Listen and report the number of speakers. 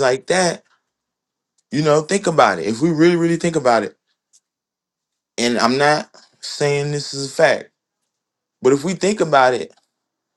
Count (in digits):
1